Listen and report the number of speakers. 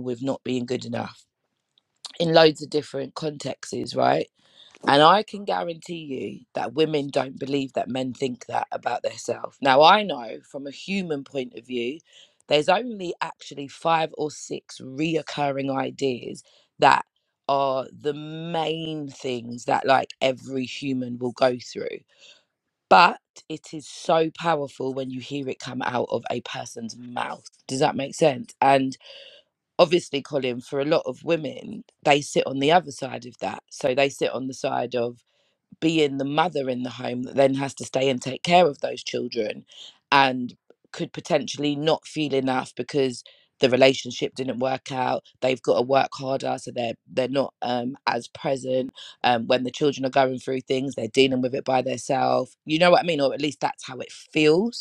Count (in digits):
1